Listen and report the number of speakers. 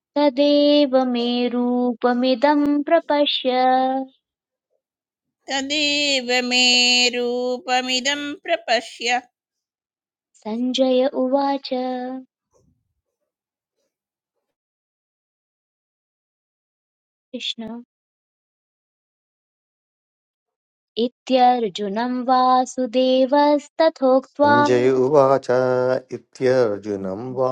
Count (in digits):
3